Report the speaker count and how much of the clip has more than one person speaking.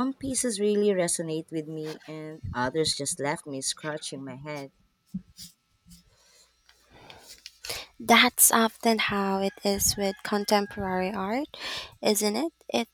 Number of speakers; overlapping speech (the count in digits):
2, no overlap